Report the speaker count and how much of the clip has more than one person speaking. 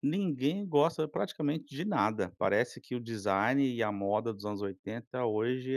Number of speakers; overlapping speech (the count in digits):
1, no overlap